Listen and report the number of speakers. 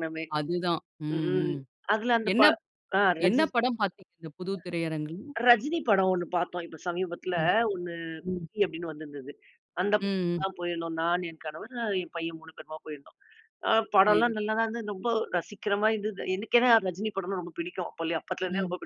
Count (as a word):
two